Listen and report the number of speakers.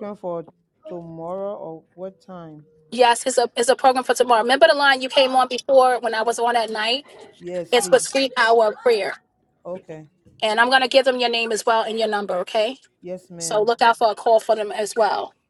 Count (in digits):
2